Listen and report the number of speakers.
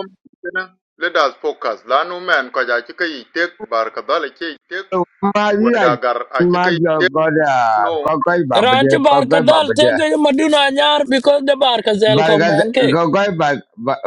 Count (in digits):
3